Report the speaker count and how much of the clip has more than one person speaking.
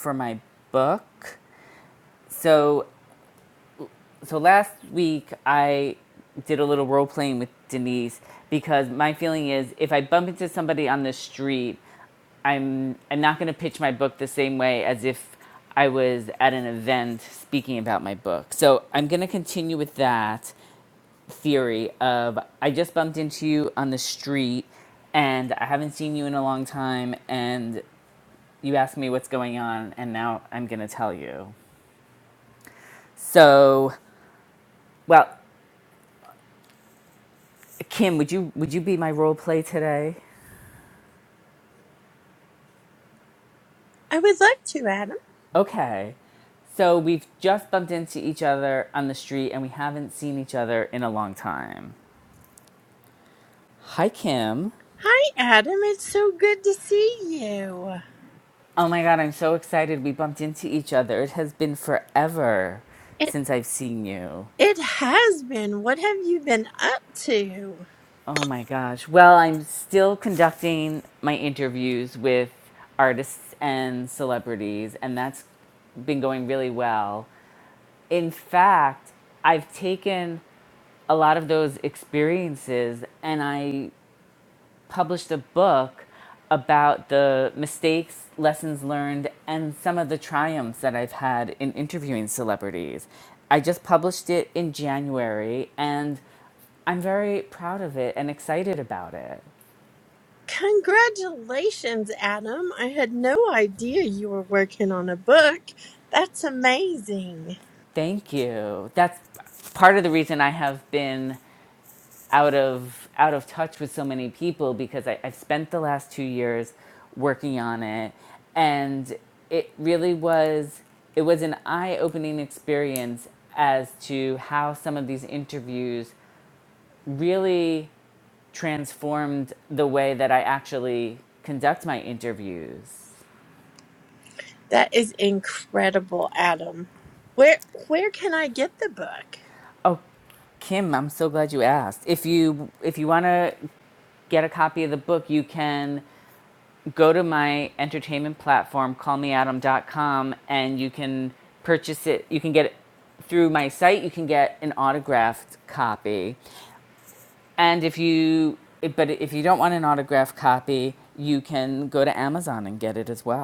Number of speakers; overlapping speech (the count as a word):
two, no overlap